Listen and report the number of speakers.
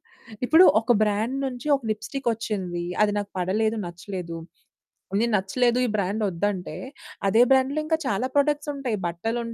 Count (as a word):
one